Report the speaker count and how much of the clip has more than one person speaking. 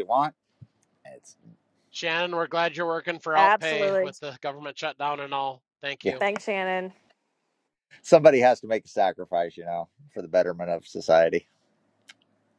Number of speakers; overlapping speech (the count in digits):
3, about 7%